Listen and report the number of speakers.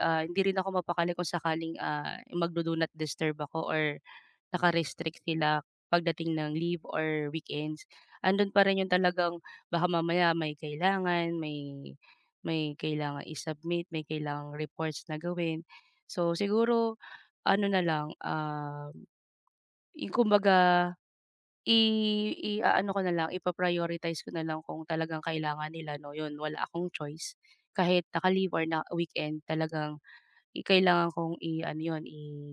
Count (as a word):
one